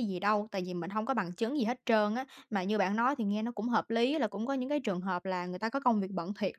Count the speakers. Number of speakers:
one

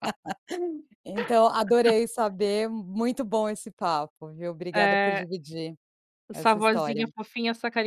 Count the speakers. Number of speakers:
two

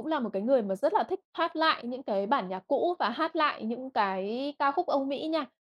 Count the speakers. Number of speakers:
one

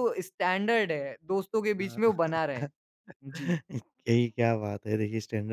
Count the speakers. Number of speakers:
two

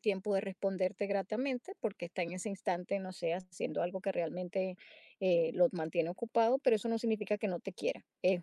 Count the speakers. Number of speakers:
one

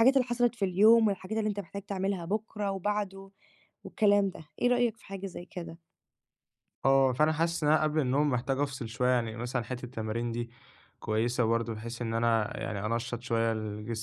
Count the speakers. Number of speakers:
two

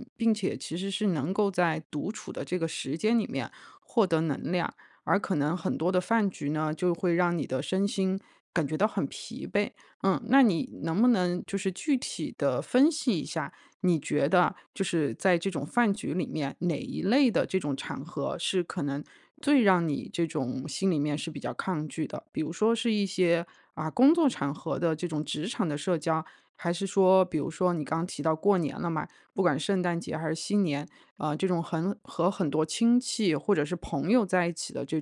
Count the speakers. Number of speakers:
one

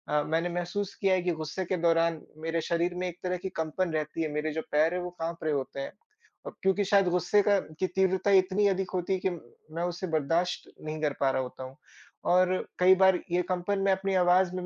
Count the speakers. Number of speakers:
one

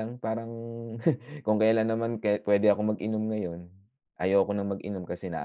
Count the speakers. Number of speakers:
one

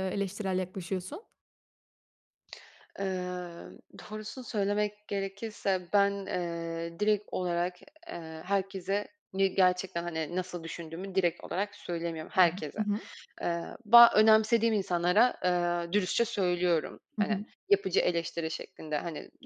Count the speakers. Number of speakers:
two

